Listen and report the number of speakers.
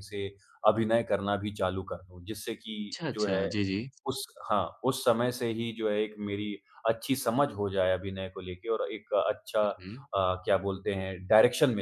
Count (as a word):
two